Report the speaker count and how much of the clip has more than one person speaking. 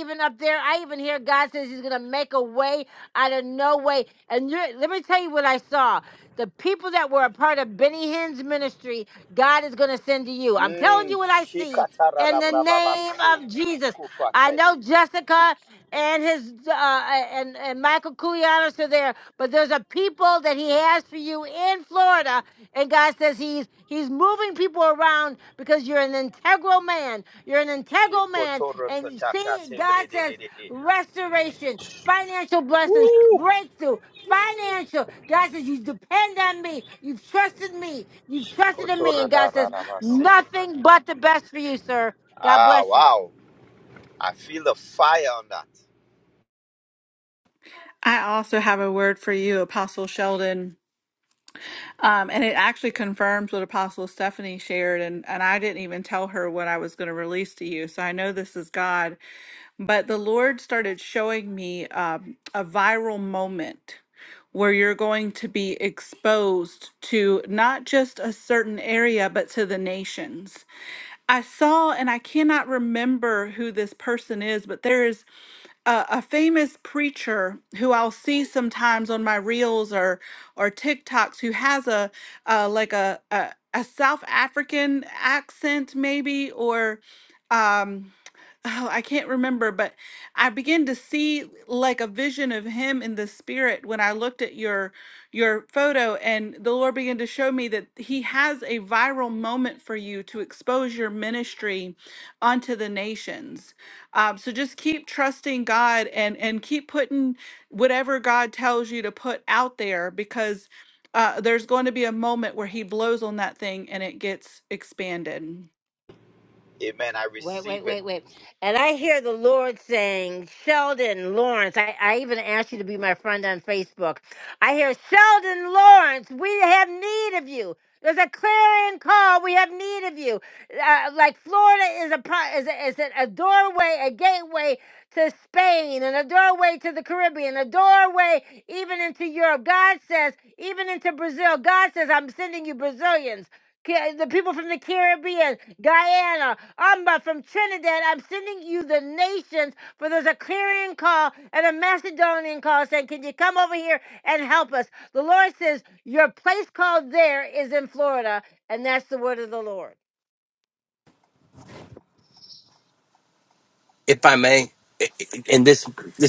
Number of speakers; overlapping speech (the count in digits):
4, about 4%